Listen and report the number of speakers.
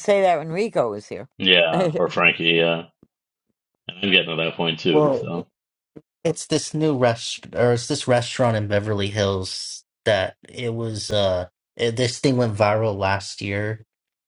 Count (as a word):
three